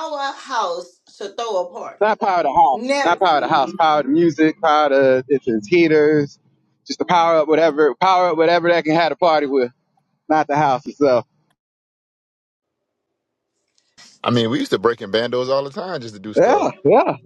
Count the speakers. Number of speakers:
3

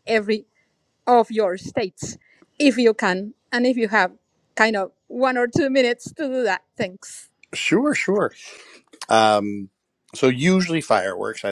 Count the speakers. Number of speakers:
2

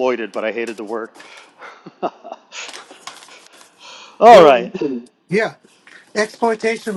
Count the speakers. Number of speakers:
2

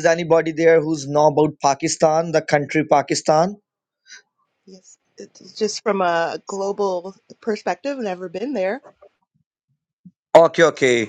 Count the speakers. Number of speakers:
2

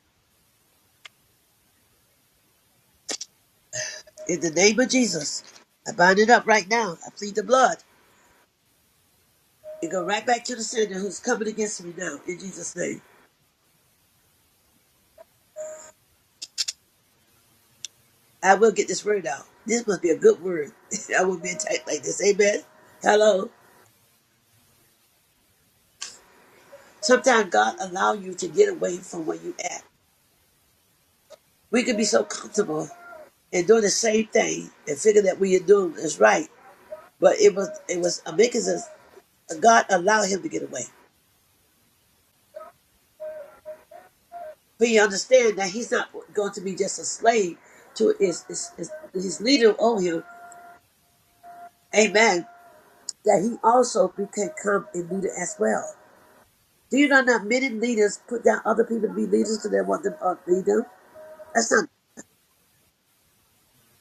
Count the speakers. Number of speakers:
1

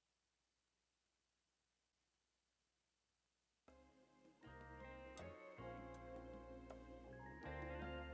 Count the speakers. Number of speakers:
0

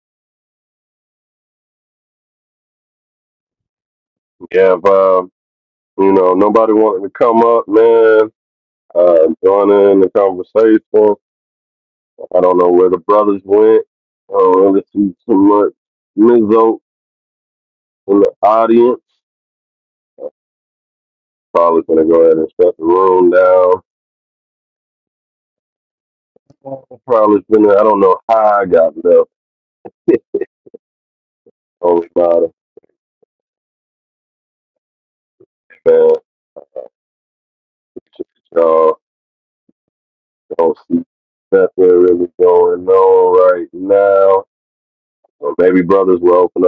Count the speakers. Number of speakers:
1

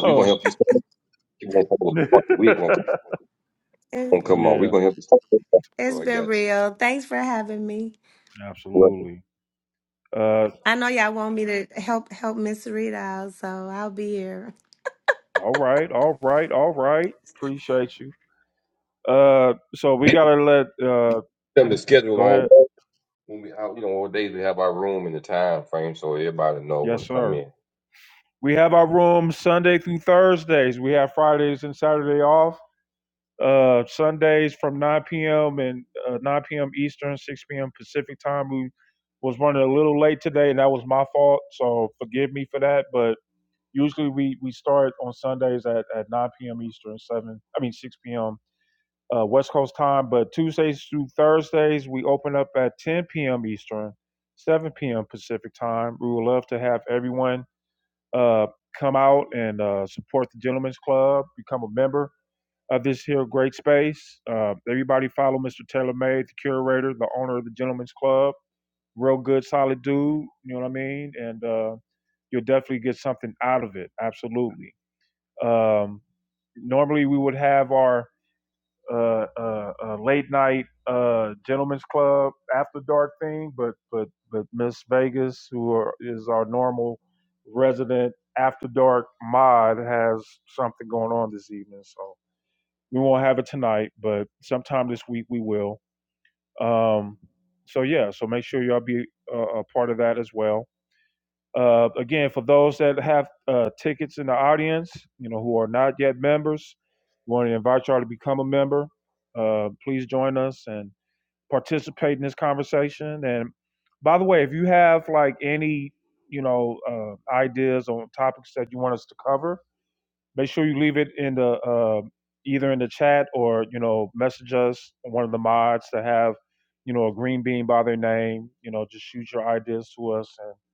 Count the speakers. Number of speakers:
3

